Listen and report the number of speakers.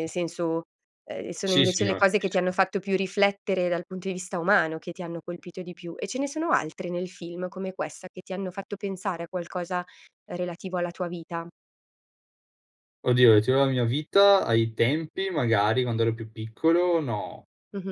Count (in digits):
2